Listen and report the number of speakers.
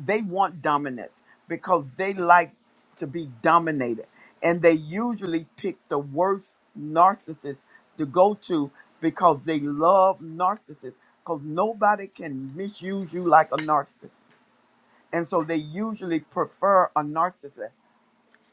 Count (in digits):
1